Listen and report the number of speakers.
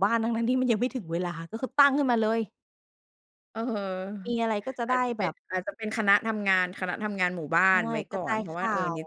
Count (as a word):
two